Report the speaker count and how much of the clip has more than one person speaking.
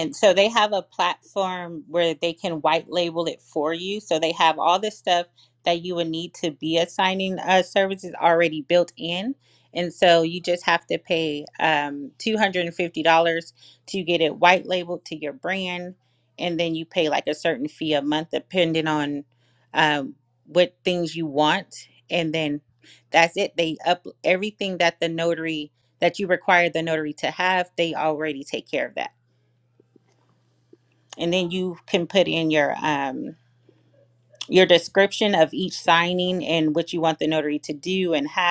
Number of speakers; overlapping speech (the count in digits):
1, no overlap